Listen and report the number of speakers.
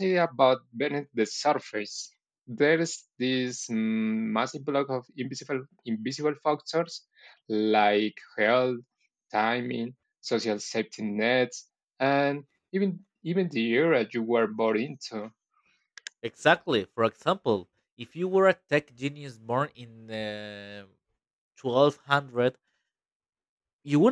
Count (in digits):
2